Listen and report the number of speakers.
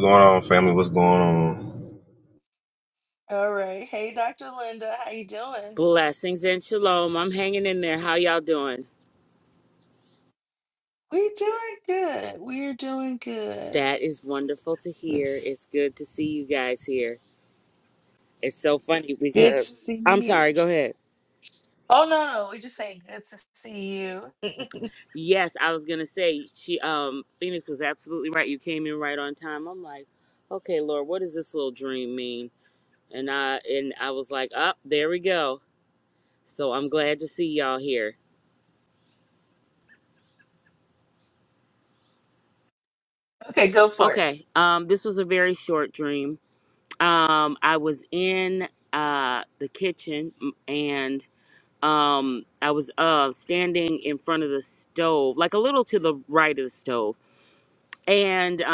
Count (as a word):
three